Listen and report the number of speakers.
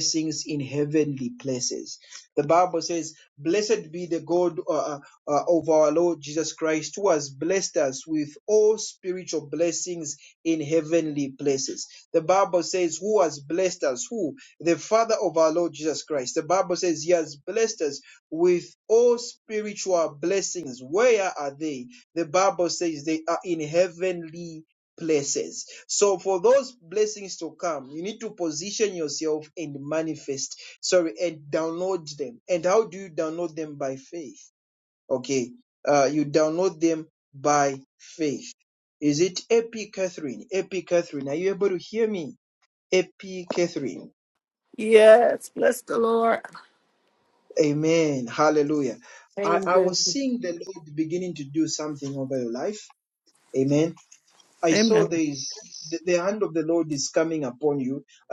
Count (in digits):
2